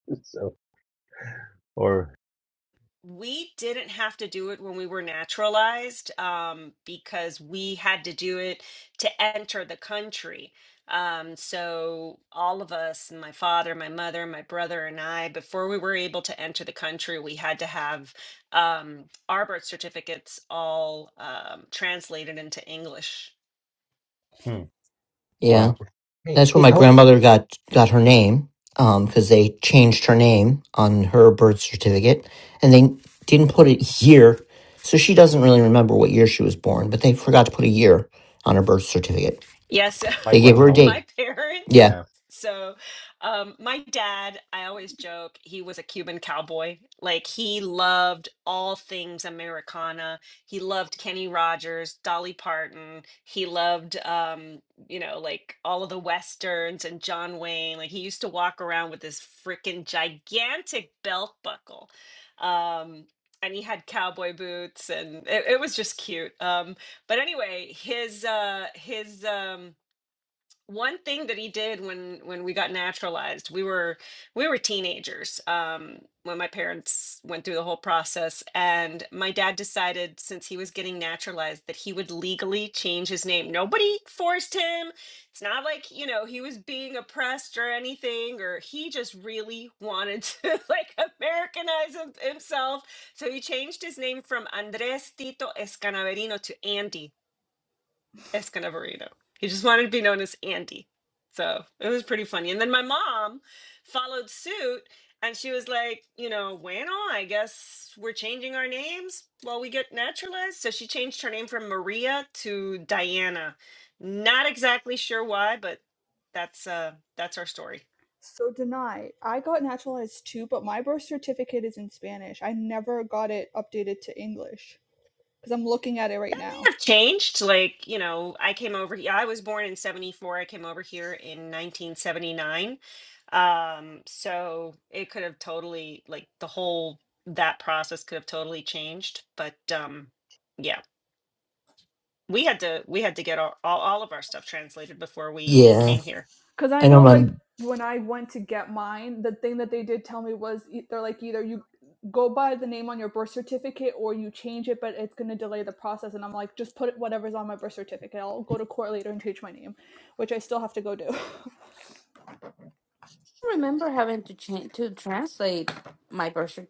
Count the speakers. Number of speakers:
5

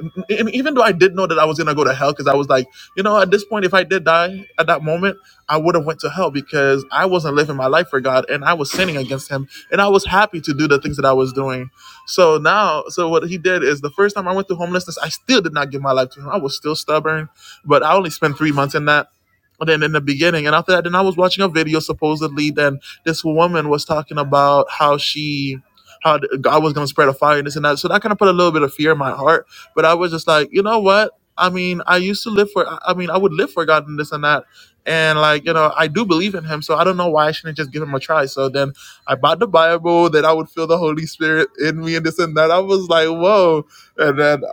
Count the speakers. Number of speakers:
1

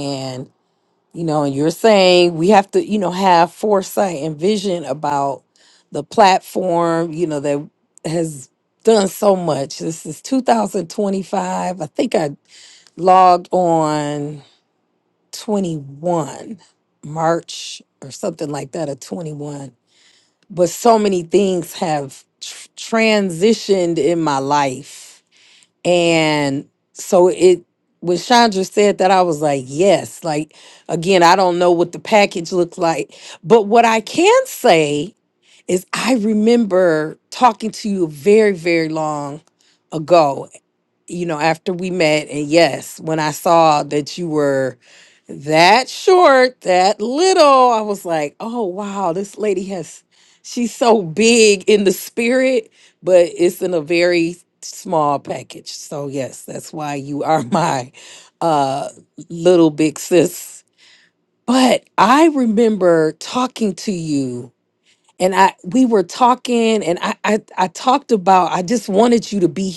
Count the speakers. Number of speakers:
1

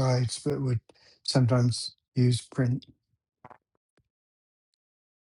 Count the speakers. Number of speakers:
1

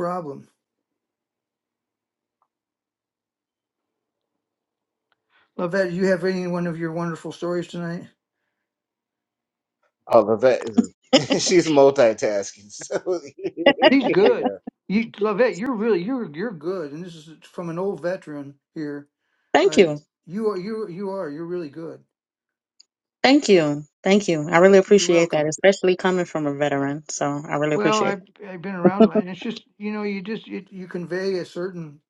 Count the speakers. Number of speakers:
3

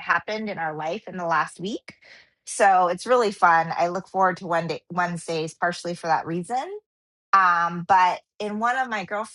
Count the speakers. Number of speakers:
1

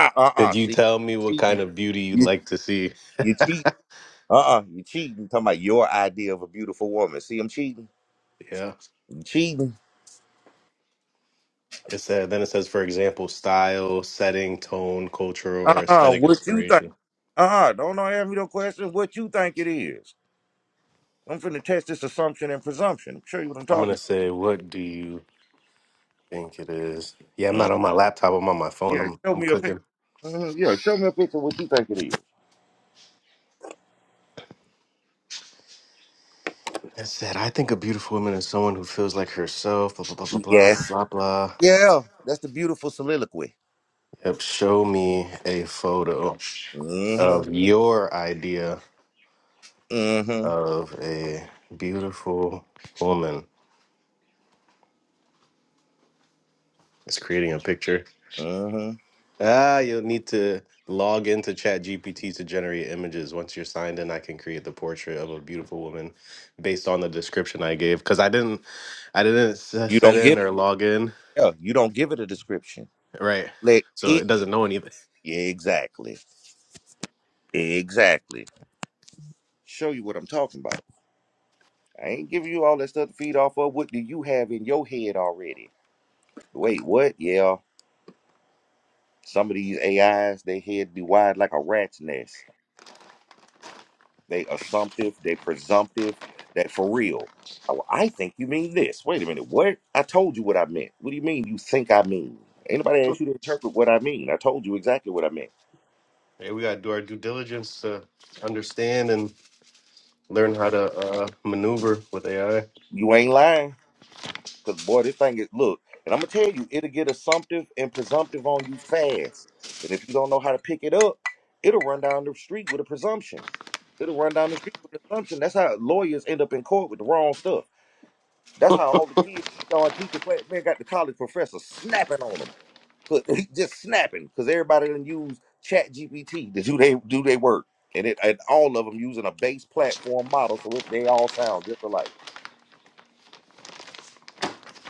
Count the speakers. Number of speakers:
2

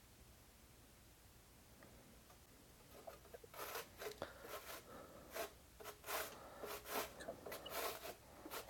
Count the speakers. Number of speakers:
0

